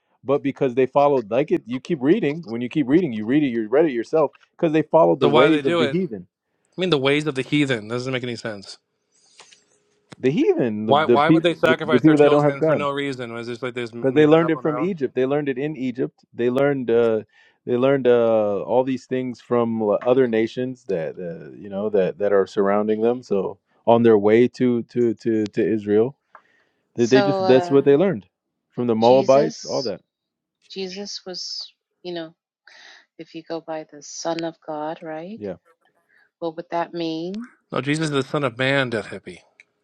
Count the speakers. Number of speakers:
3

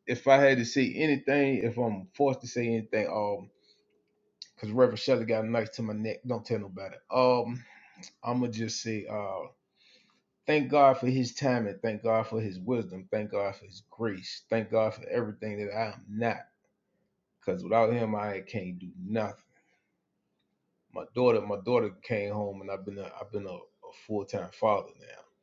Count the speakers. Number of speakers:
1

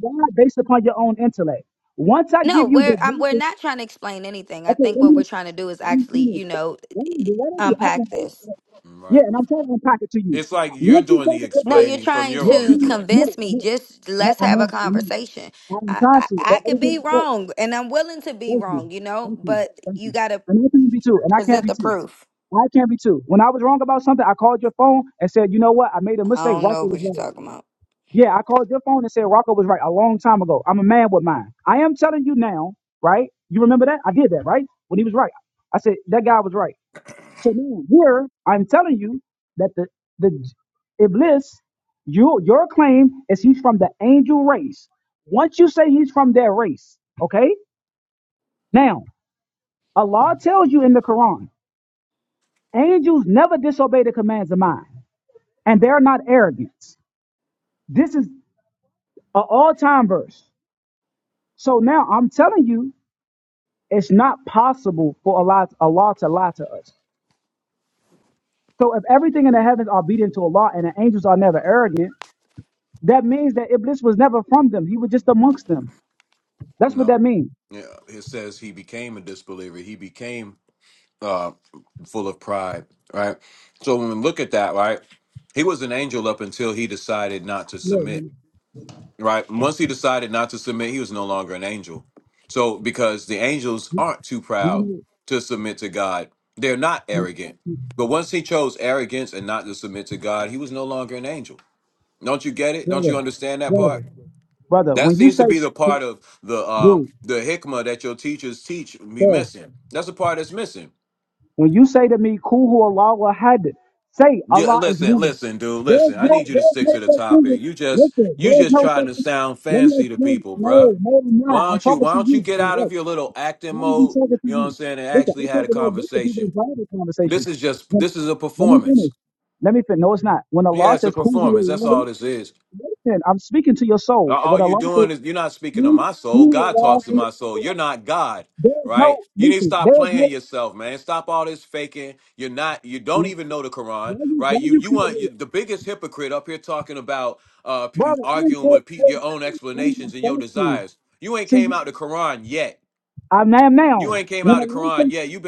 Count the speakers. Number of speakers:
3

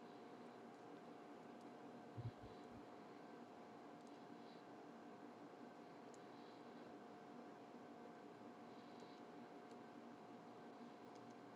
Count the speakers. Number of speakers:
0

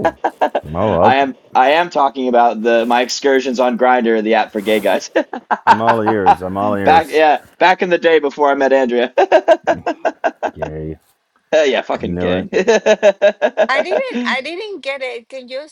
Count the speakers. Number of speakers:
3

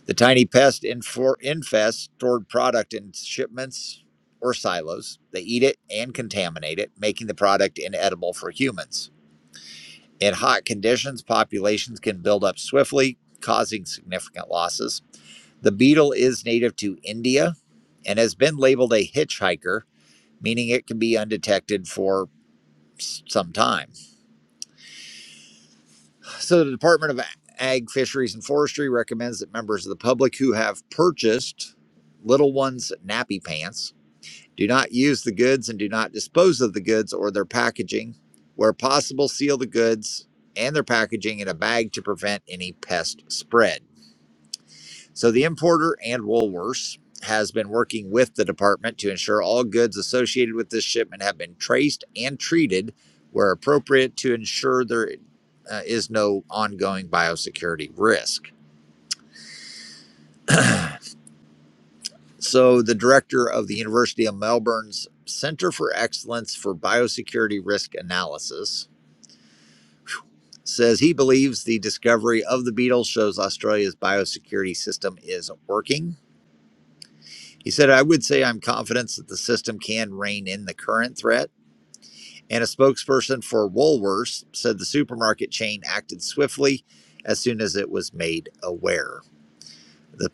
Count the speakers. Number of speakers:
1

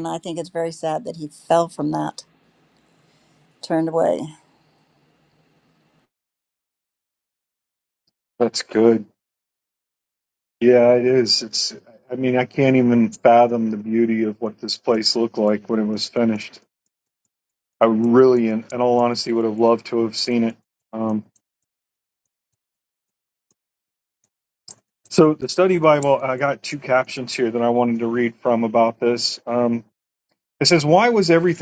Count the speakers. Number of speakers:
2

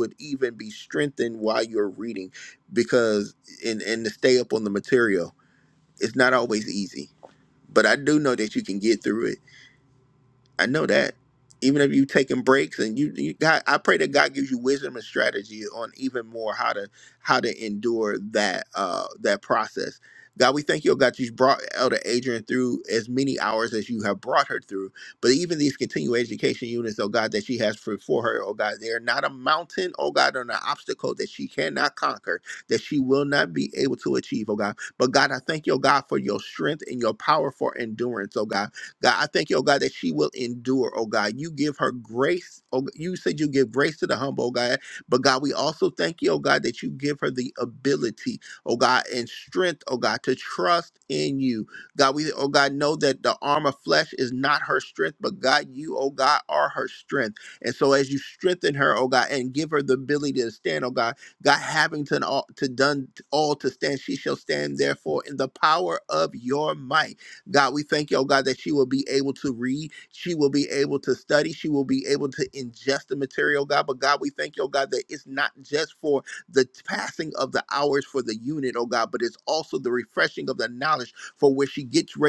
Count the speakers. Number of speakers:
1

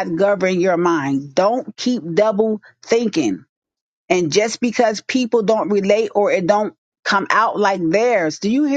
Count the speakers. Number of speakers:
1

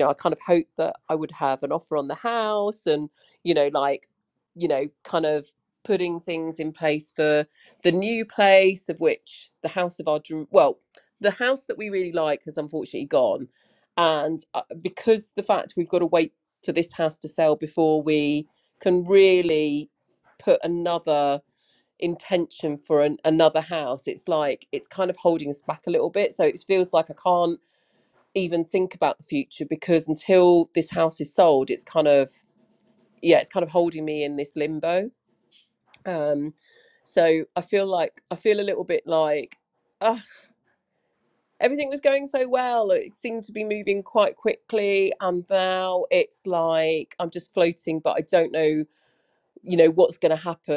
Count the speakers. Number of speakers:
1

